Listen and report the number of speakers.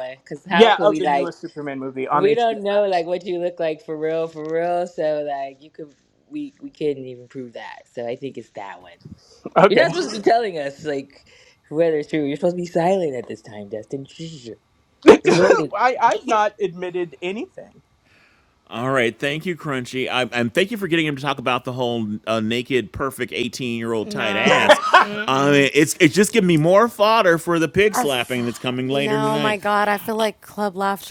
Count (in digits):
4